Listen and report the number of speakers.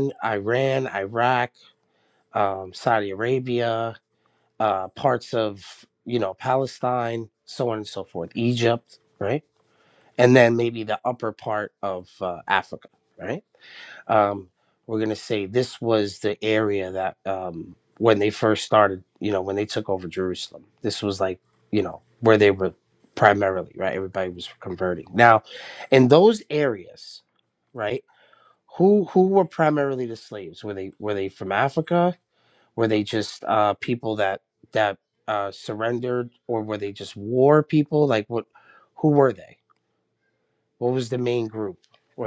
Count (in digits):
1